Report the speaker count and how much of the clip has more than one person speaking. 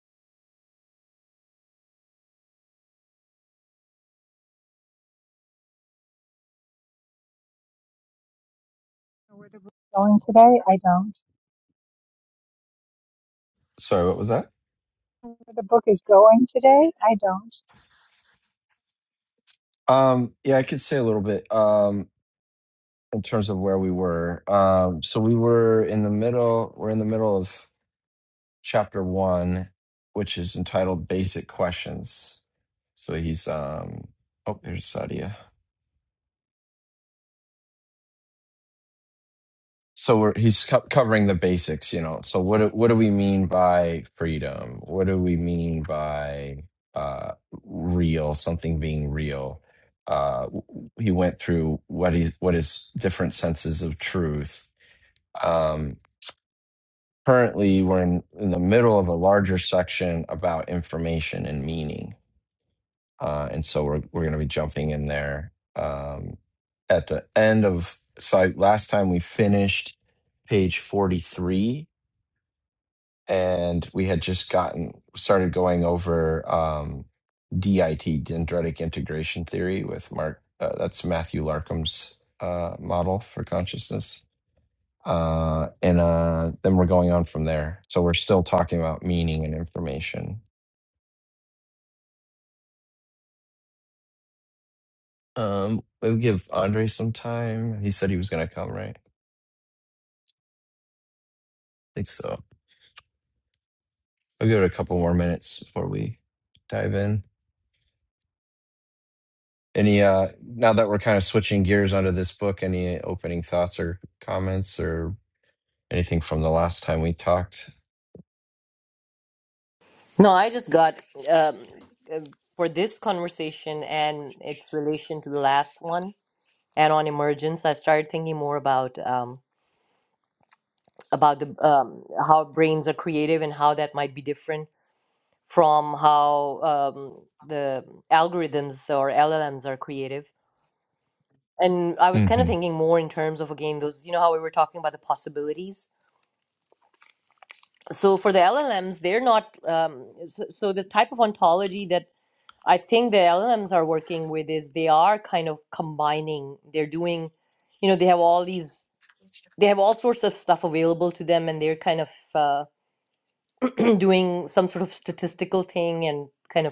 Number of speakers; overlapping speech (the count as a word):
three, under 1%